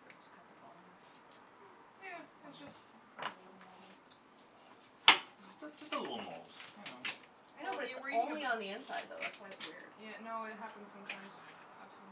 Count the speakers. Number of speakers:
three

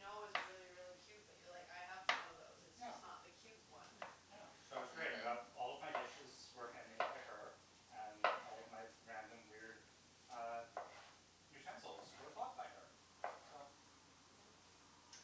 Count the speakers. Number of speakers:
two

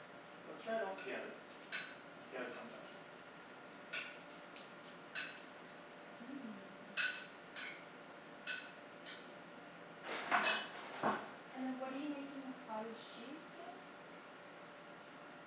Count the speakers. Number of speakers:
two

